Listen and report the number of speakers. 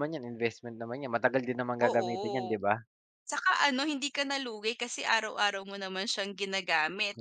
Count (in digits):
2